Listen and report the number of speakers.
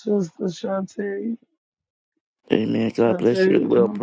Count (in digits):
2